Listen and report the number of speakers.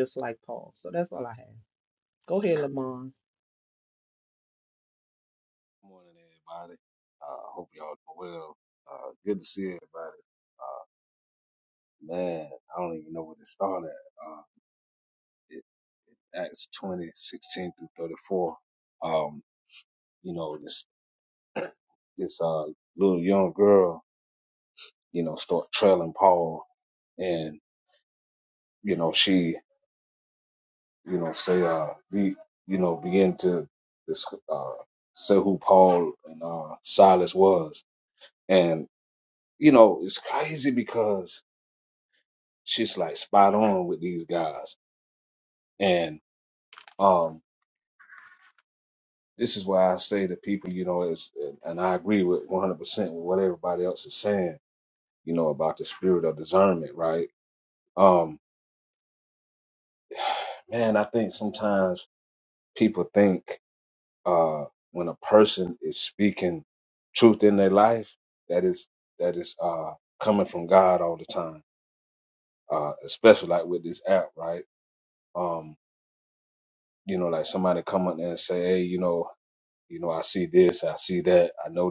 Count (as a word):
two